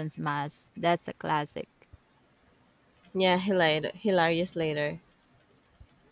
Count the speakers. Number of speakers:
two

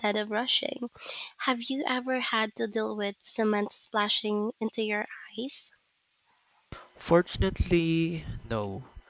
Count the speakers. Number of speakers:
two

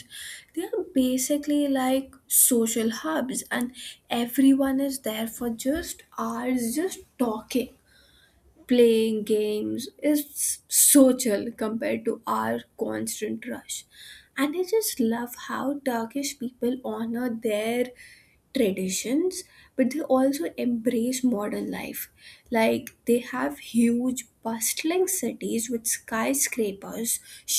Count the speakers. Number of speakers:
one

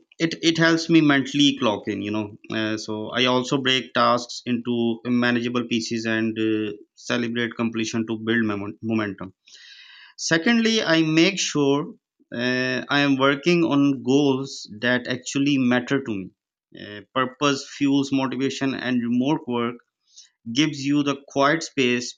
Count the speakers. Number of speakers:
one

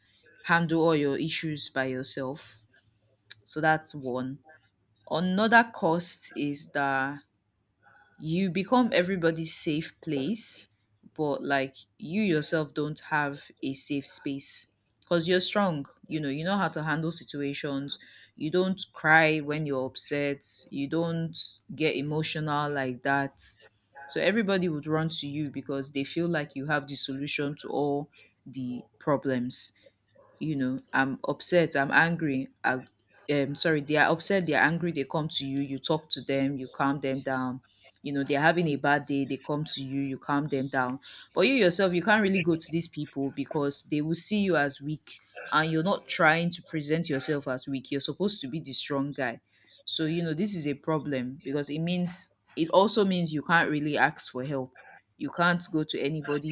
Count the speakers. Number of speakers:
one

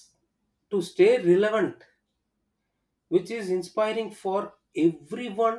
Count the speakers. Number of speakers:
one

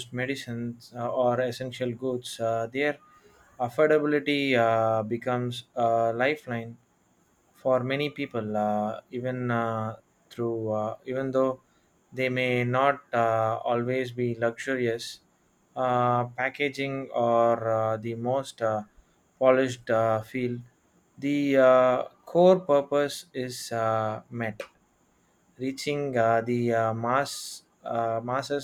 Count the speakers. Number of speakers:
one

